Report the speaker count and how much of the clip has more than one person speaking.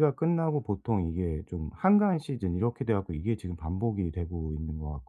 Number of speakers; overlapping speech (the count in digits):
1, no overlap